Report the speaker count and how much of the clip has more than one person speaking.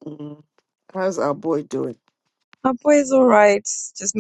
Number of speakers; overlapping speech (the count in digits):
2, no overlap